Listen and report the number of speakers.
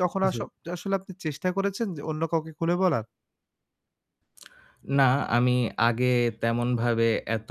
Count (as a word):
two